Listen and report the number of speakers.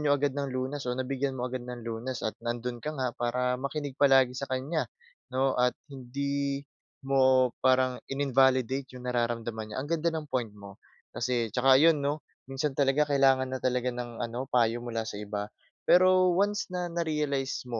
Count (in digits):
1